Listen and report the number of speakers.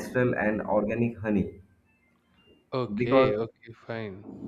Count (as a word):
two